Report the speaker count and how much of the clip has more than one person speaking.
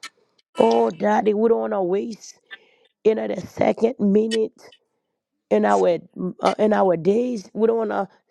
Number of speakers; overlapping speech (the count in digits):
1, no overlap